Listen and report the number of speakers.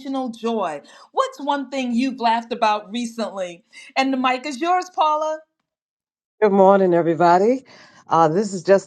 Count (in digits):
2